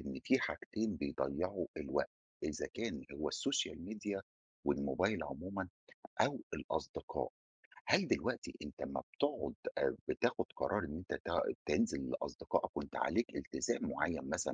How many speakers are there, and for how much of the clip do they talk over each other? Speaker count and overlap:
one, no overlap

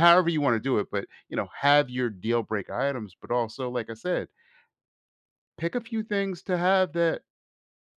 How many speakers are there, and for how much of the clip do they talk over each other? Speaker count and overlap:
one, no overlap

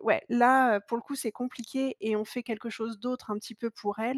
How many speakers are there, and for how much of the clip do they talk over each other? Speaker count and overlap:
one, no overlap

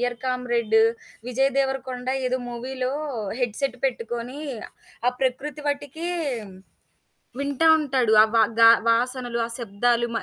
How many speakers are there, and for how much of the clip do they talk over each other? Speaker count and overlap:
one, no overlap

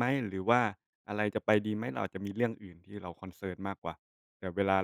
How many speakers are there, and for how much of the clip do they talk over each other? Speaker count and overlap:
one, no overlap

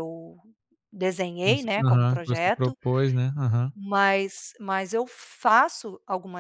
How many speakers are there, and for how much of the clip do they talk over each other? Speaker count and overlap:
two, about 20%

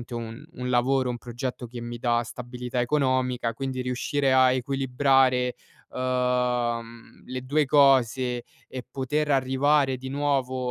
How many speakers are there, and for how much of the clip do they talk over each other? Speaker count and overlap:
one, no overlap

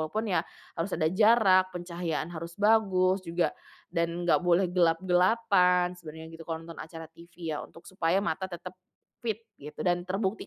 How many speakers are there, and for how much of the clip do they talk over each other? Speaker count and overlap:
one, no overlap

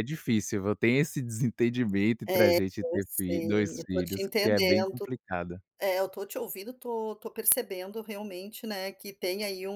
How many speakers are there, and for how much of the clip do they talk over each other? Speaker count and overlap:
two, about 29%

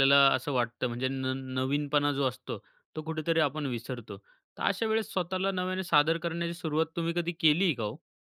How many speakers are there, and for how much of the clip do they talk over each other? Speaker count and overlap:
one, no overlap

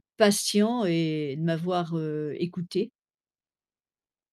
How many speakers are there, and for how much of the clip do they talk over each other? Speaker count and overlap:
one, no overlap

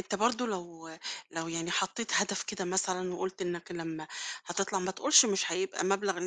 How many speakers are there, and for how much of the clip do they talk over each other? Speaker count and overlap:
one, no overlap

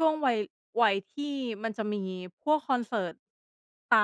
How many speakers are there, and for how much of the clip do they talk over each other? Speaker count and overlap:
one, no overlap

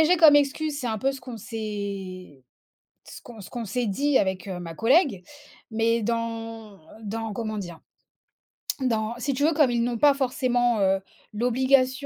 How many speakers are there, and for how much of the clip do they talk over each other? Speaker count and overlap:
one, no overlap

